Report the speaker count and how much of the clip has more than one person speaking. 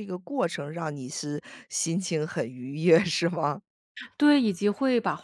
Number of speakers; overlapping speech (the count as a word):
two, no overlap